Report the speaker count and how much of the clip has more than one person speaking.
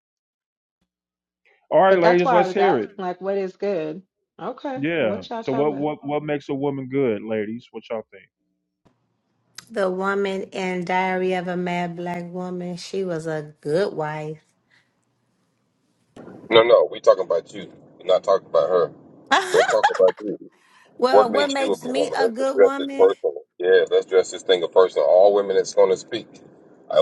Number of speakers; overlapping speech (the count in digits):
4, about 15%